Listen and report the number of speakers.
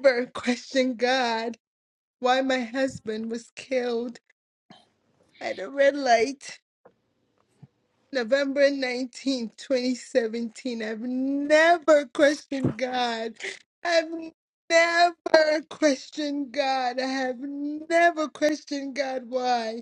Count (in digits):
1